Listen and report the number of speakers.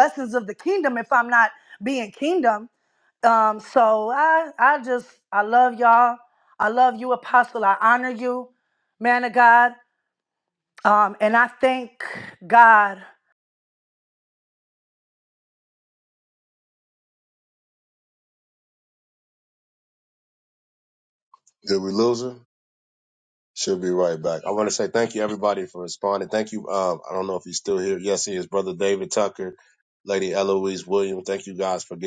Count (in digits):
2